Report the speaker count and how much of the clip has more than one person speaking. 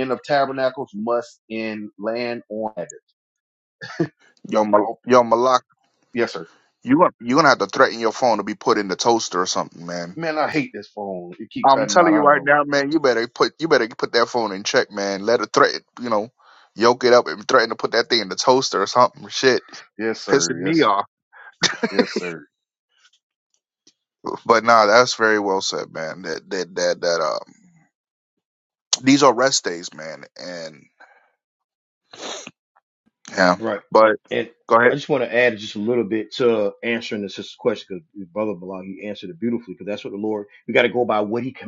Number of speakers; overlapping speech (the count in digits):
3, about 4%